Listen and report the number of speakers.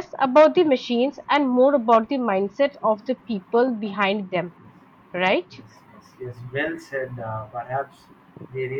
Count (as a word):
two